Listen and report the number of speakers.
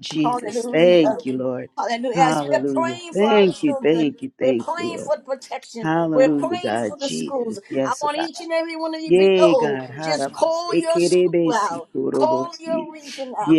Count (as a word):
two